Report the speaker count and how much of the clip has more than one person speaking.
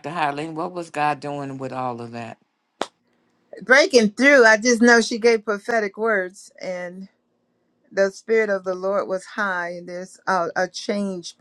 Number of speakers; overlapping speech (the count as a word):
two, no overlap